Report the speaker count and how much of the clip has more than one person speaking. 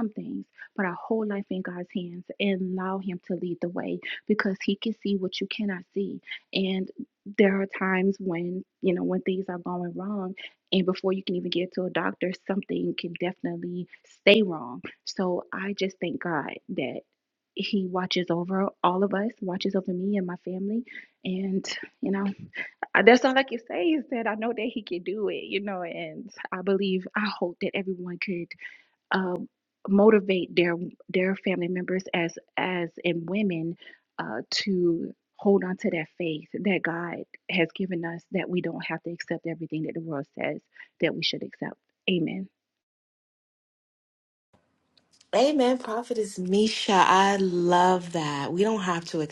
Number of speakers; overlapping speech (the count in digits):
2, no overlap